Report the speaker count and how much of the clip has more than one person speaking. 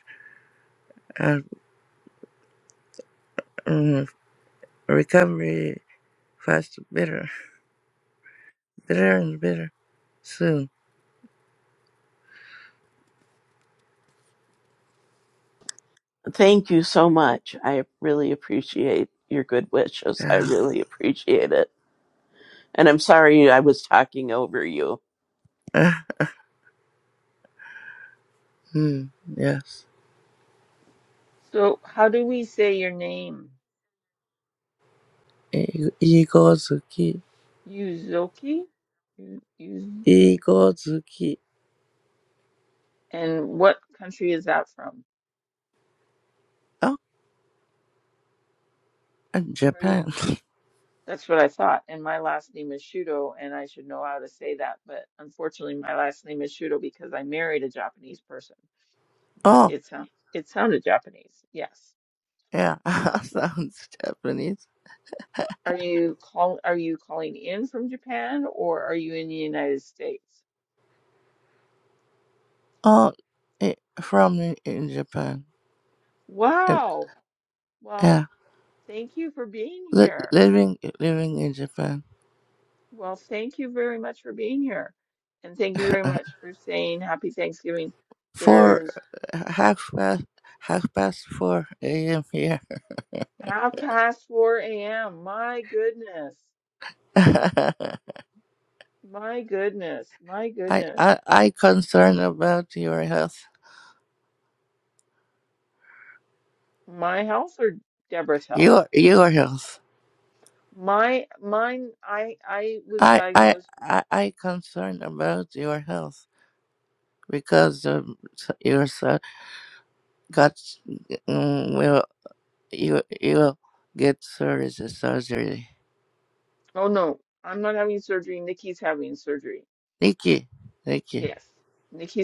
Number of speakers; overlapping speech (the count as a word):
three, about 3%